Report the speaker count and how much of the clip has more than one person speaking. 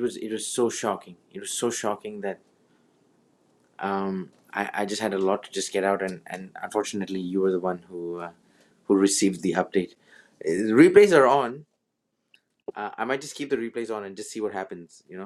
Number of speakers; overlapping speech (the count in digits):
1, no overlap